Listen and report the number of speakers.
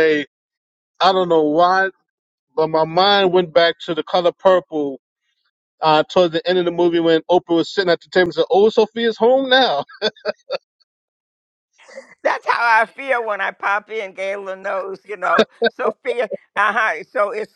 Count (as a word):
two